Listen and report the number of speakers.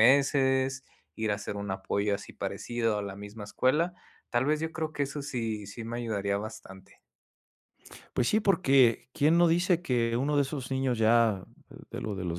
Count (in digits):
2